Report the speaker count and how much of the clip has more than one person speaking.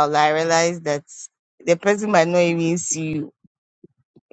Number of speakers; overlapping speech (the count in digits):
1, no overlap